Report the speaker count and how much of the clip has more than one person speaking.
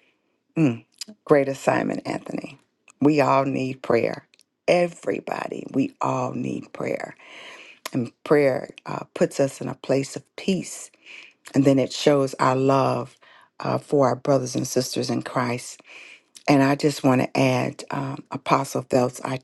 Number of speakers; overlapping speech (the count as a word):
one, no overlap